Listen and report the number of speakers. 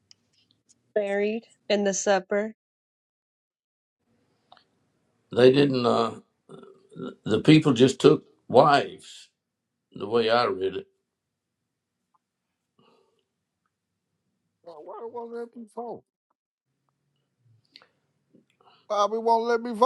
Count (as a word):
three